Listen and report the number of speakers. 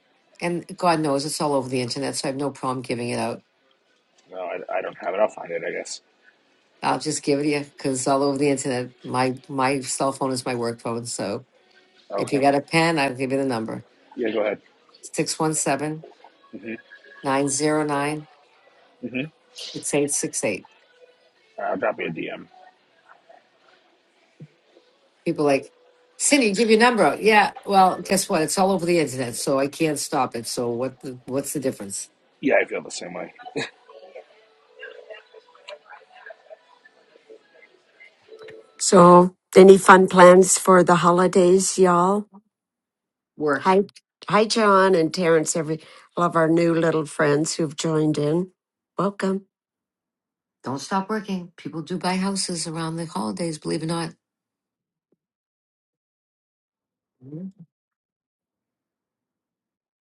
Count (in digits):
3